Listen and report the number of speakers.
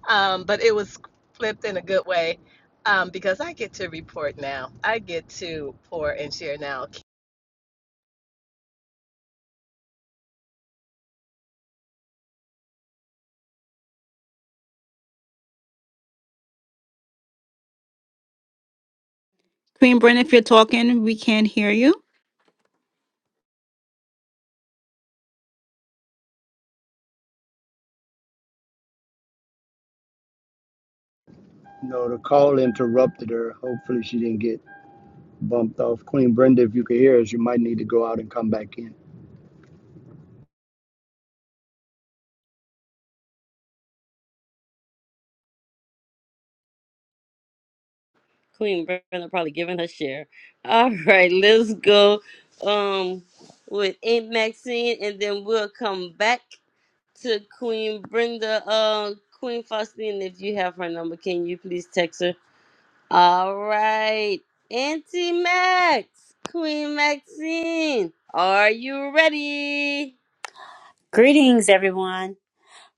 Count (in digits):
5